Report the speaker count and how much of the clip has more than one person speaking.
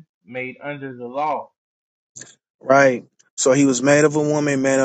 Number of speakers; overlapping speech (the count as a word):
two, no overlap